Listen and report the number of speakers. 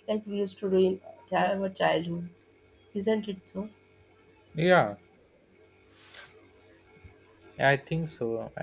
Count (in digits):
2